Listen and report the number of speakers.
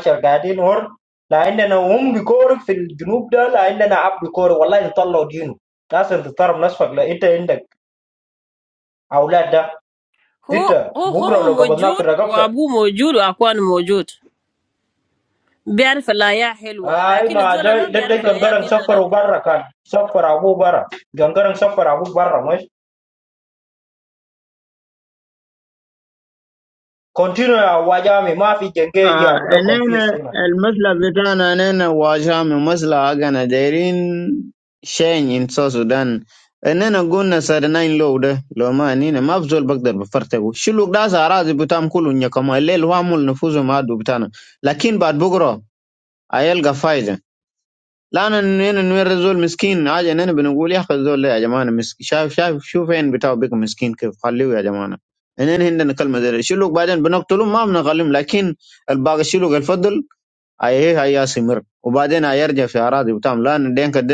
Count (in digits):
3